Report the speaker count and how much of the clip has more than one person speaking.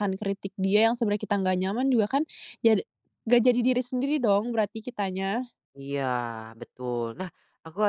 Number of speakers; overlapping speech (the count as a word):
two, no overlap